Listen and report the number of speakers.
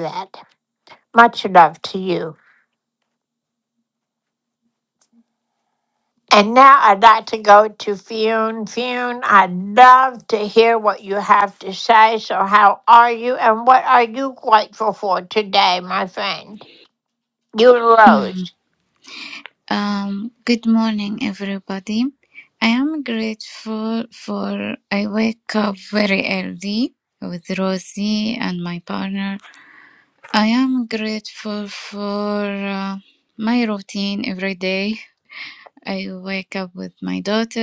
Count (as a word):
two